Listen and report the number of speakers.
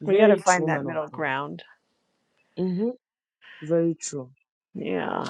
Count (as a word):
two